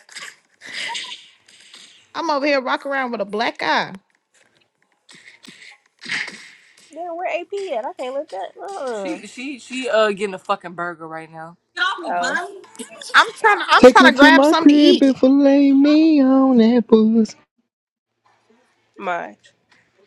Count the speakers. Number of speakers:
4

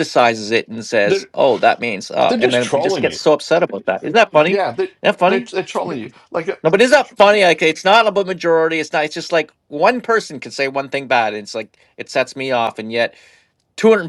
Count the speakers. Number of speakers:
2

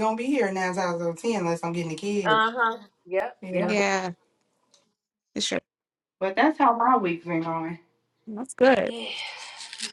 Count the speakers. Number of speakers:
3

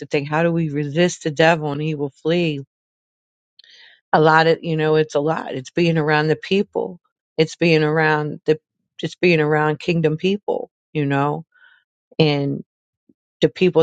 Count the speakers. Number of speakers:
1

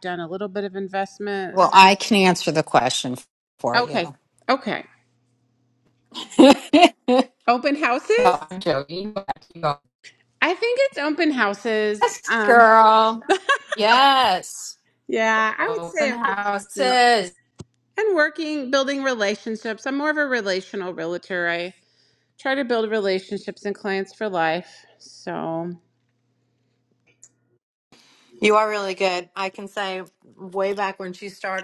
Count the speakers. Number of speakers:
3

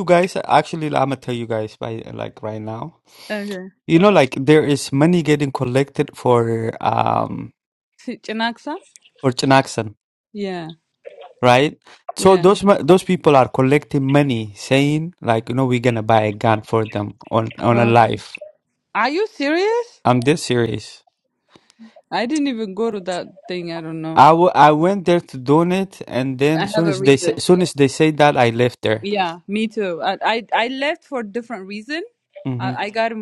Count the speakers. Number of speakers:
2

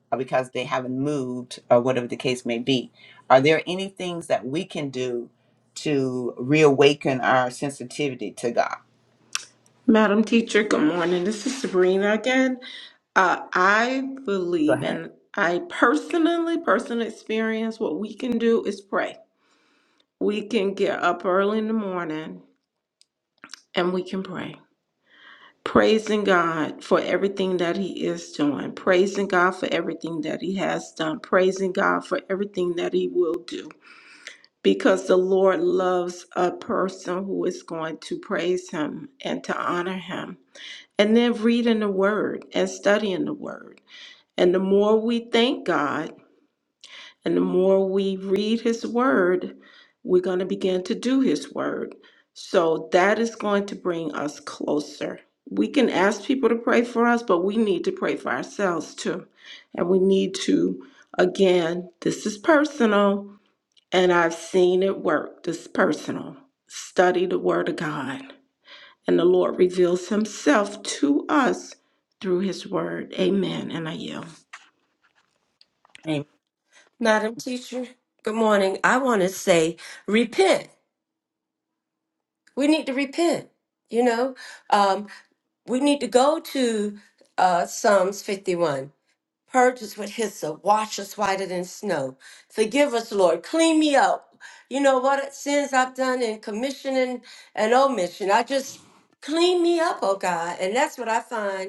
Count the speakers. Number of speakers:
3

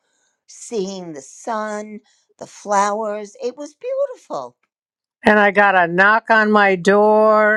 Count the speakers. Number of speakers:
2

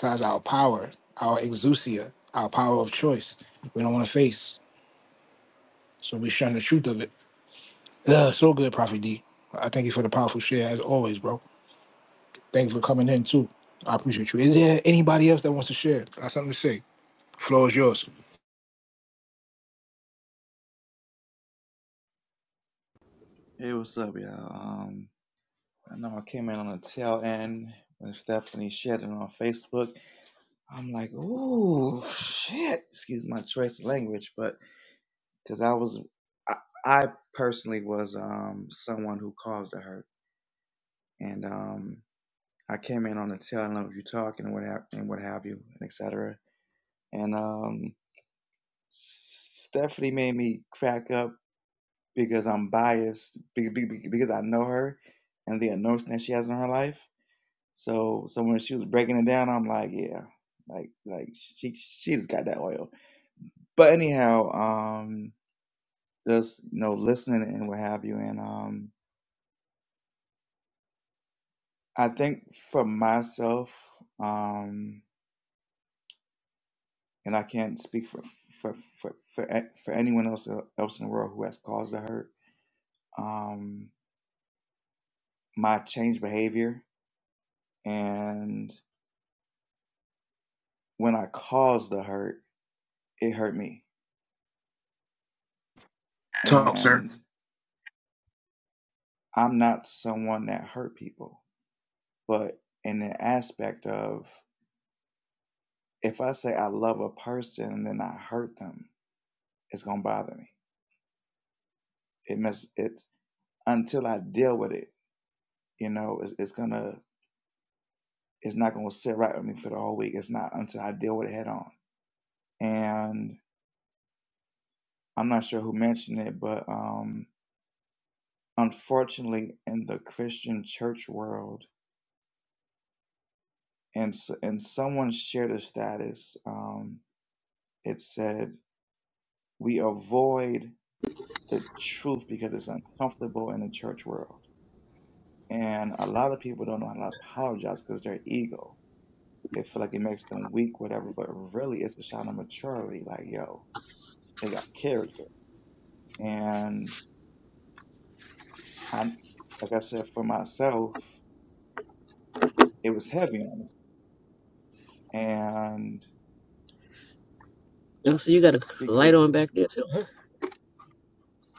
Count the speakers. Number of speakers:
3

